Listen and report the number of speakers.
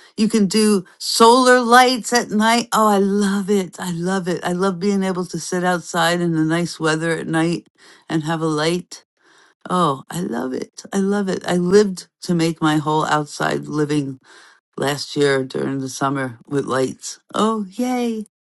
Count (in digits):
1